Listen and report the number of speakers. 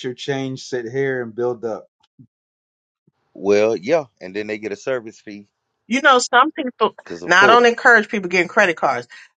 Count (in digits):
3